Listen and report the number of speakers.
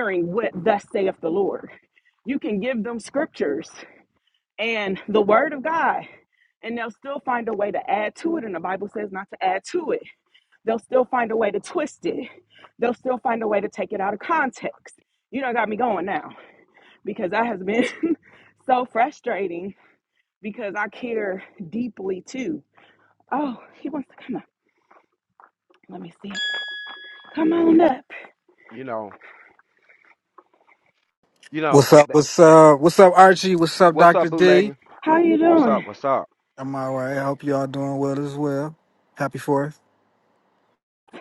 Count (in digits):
3